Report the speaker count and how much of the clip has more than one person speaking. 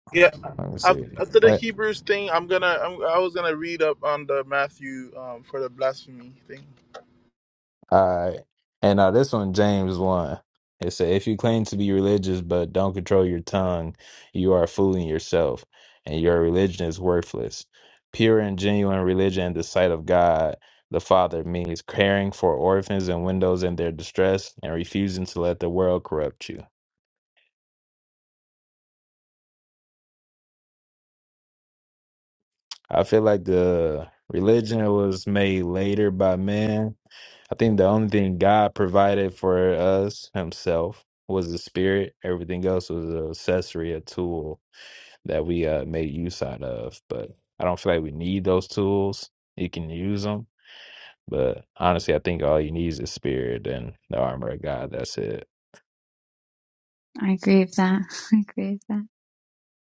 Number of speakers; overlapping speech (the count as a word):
three, about 1%